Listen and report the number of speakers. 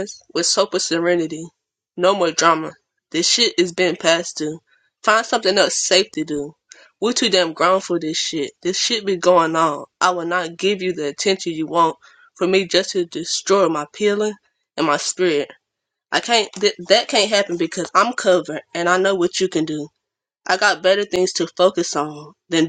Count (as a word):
one